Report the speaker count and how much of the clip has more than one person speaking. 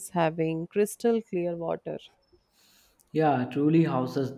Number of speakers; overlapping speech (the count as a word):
two, no overlap